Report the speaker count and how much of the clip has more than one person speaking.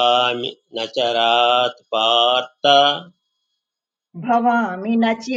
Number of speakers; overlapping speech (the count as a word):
two, no overlap